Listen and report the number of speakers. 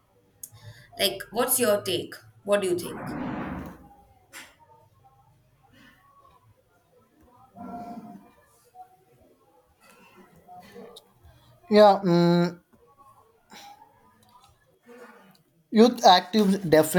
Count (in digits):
2